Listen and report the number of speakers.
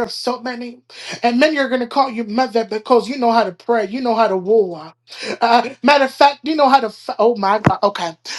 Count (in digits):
1